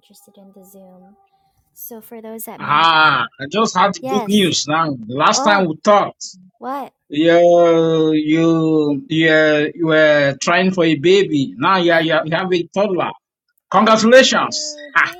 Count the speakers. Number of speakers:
2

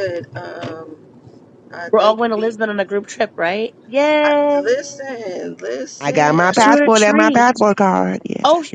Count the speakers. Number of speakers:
3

